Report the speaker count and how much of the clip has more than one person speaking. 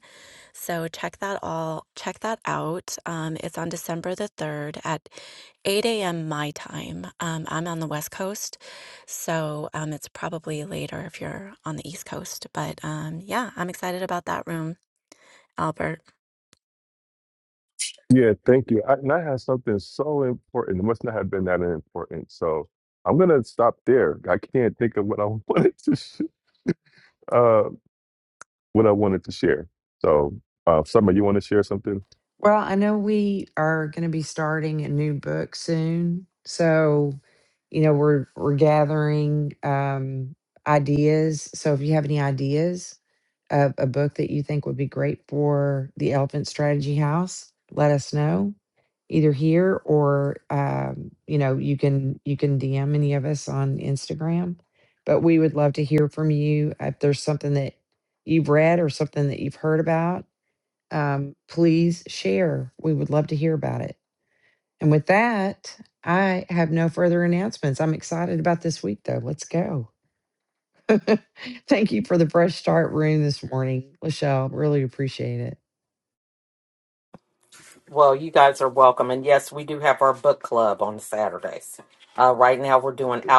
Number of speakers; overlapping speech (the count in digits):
4, no overlap